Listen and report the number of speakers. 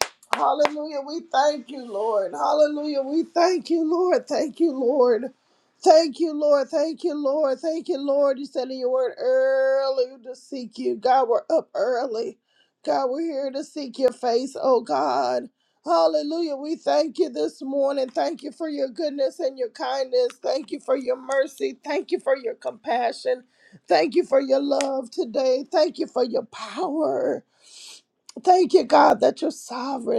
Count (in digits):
1